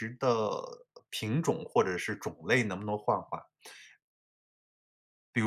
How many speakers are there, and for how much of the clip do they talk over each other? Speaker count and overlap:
one, no overlap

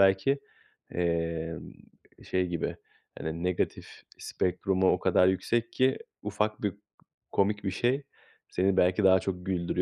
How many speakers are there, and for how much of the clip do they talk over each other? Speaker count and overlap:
one, no overlap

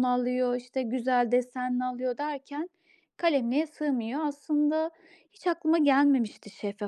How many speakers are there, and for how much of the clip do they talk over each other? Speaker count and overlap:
one, no overlap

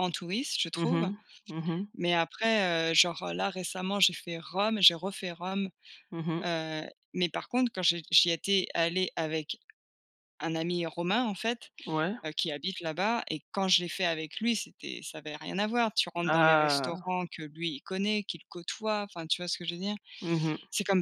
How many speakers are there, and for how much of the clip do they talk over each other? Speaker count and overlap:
two, about 6%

